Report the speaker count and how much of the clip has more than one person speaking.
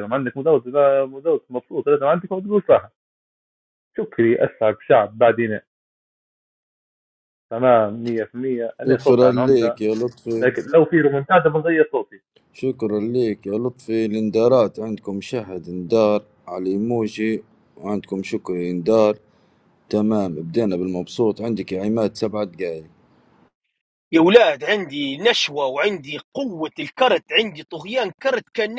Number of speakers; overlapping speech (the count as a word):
three, about 3%